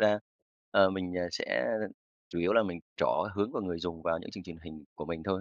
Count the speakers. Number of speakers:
one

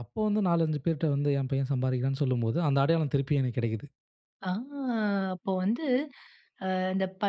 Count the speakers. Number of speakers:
two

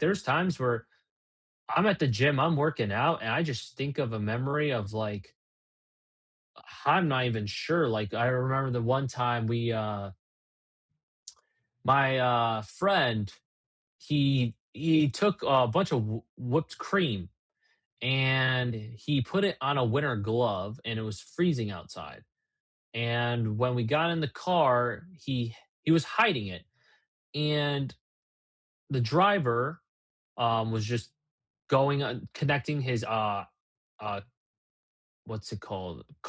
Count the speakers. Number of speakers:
one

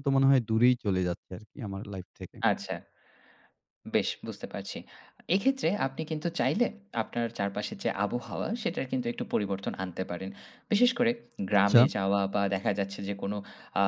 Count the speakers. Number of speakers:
two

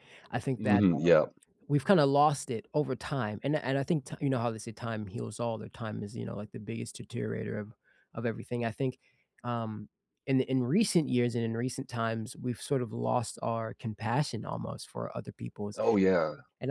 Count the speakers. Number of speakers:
two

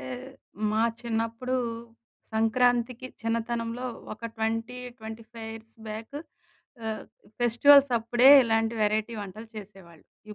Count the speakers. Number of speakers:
one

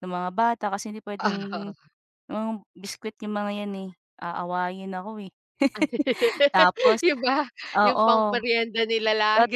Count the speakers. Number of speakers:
two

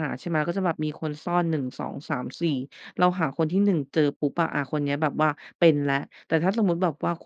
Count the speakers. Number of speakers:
one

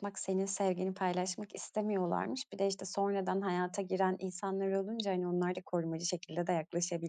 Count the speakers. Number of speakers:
one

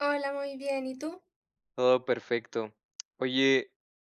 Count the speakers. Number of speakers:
two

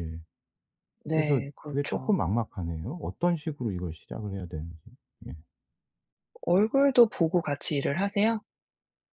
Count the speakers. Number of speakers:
two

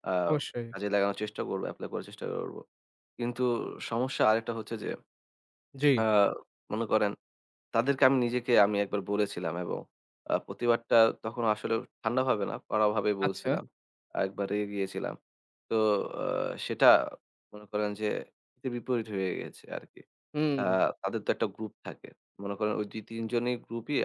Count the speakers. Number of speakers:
two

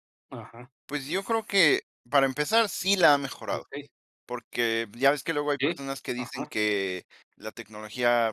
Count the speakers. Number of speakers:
two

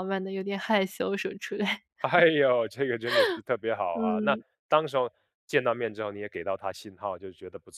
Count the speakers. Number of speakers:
two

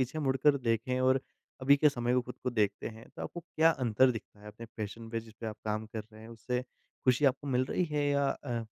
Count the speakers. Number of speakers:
one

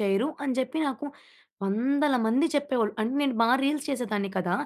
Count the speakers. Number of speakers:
one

